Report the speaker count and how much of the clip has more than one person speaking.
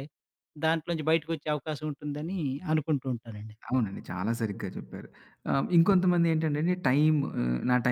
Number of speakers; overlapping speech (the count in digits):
2, no overlap